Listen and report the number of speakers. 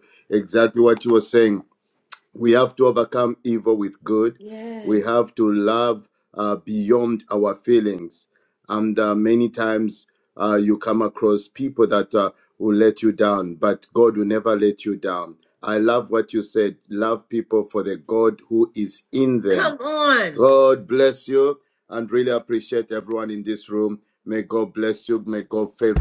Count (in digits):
2